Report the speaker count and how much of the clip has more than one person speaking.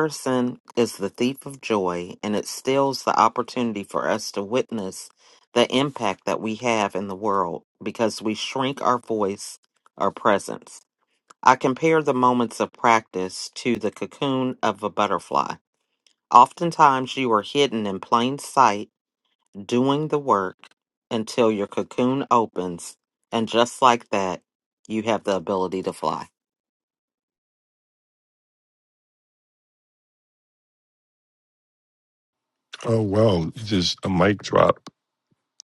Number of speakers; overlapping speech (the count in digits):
2, no overlap